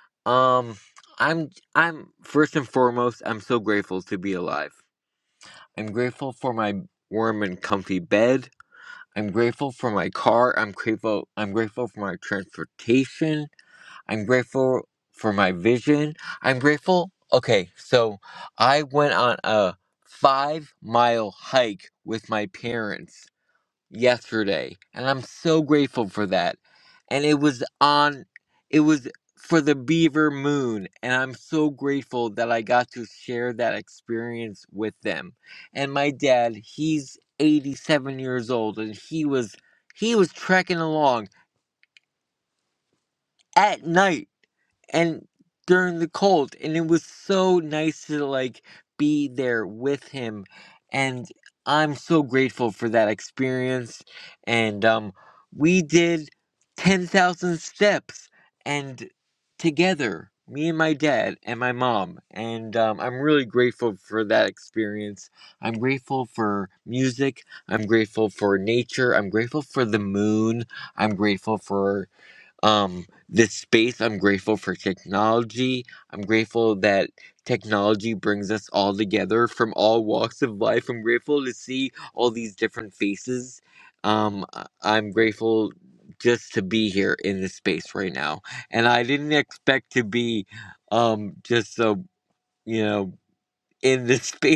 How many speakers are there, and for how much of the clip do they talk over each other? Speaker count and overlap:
one, no overlap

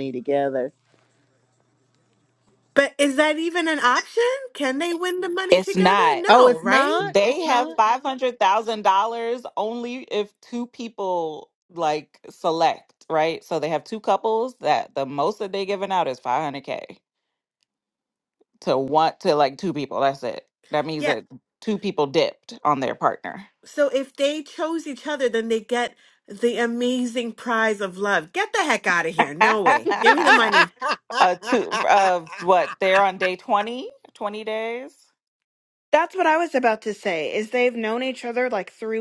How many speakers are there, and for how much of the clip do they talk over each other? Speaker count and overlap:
four, about 6%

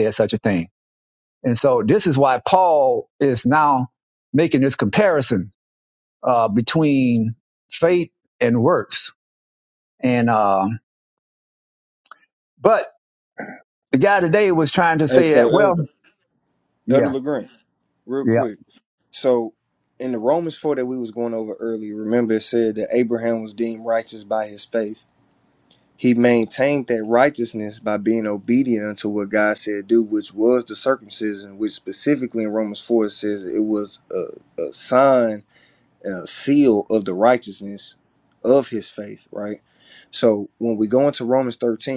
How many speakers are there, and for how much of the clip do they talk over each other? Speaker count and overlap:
two, about 3%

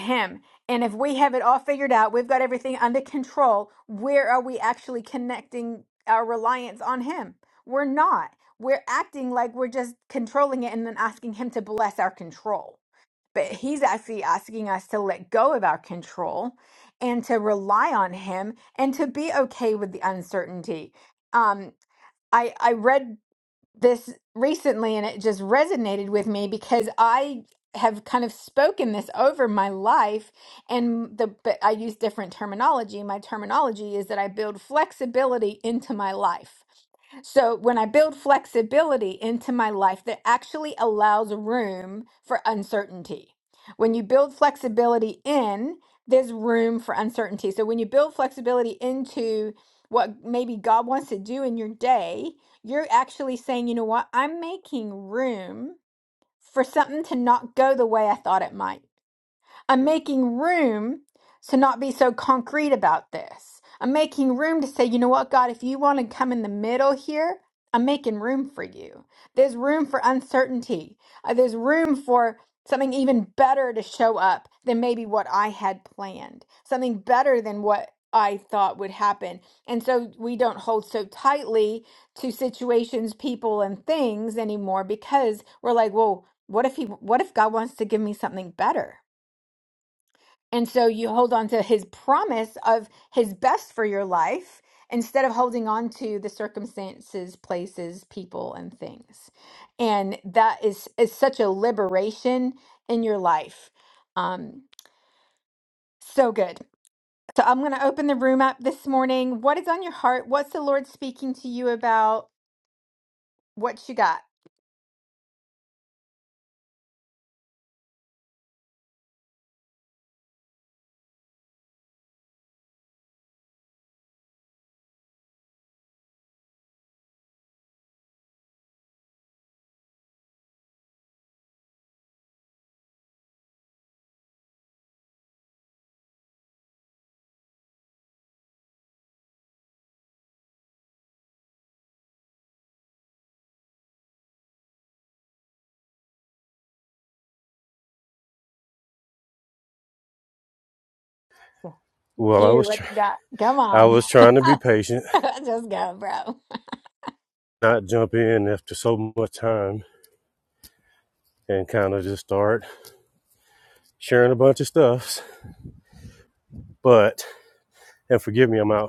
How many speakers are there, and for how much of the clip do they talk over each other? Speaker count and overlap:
two, about 1%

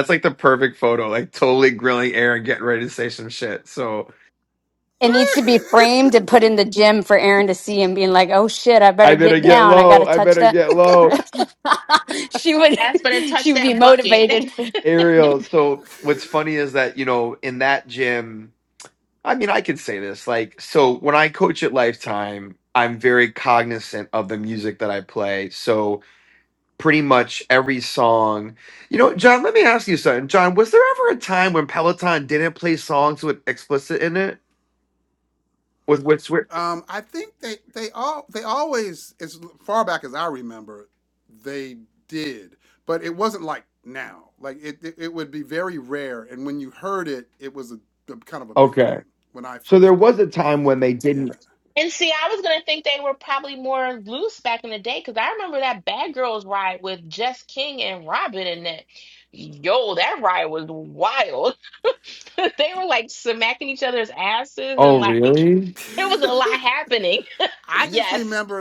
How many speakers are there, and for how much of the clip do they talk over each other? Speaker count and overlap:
four, about 7%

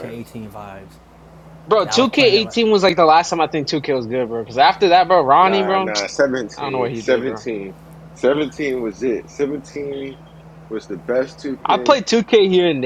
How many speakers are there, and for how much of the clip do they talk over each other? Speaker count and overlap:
three, about 21%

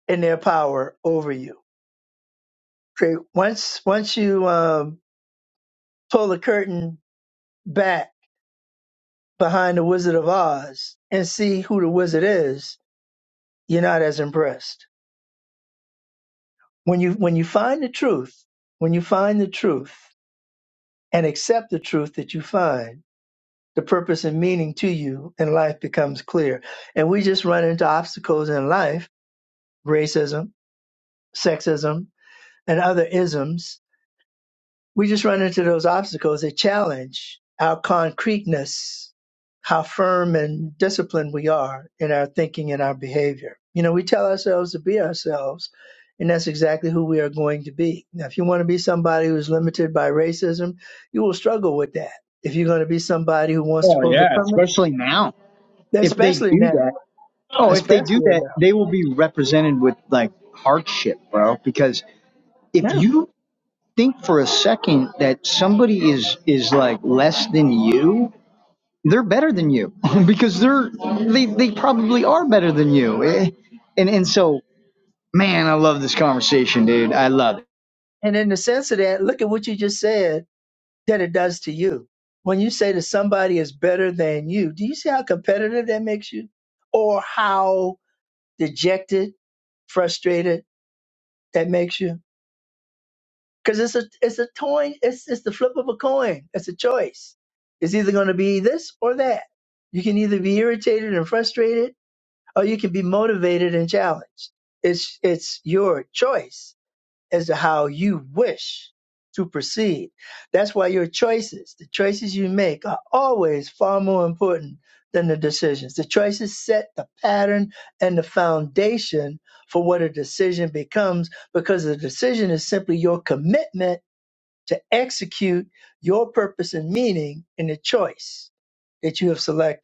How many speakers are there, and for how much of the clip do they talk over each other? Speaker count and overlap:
two, about 2%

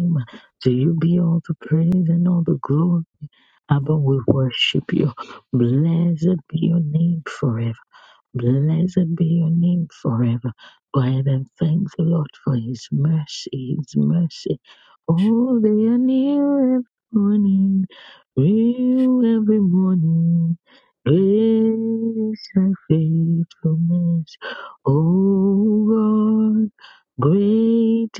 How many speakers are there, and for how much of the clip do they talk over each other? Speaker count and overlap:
one, no overlap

